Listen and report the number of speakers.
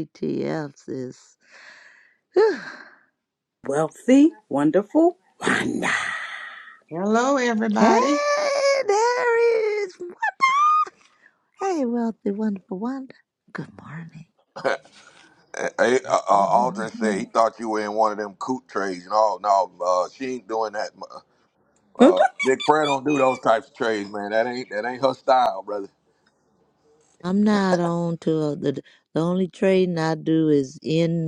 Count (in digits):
4